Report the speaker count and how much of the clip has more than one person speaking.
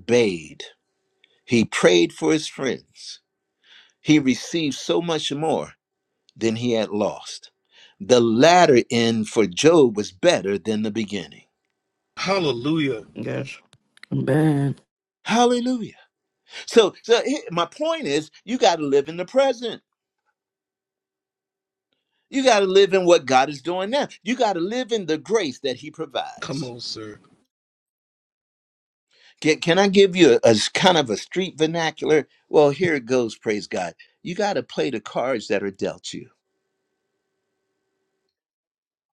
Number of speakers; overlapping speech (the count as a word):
three, no overlap